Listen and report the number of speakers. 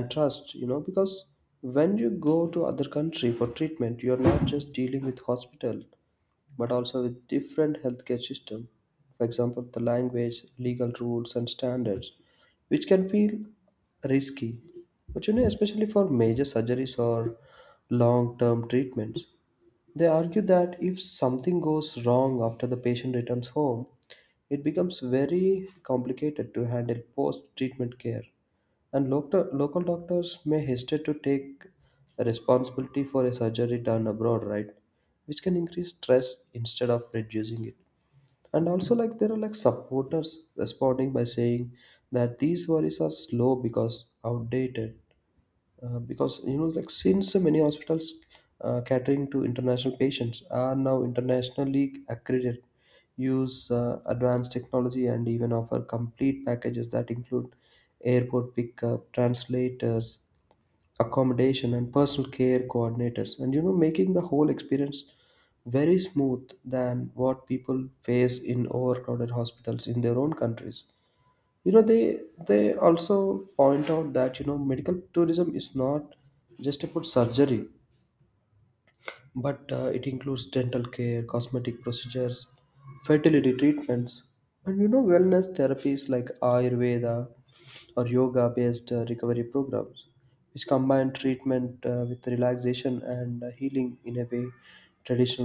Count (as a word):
one